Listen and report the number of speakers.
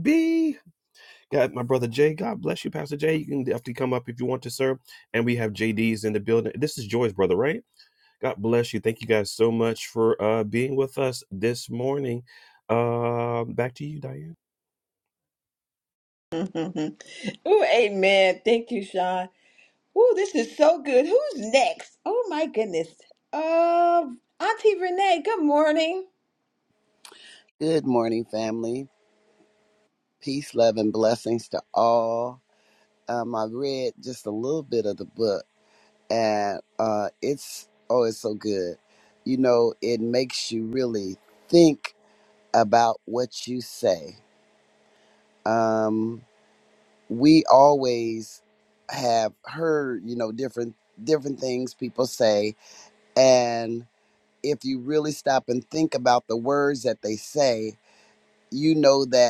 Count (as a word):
three